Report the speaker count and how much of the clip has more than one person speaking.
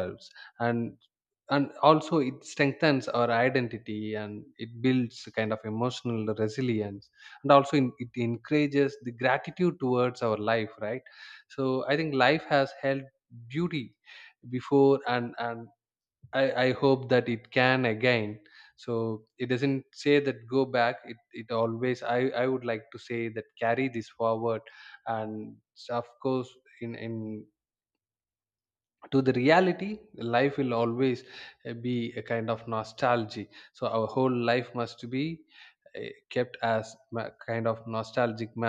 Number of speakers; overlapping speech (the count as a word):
one, no overlap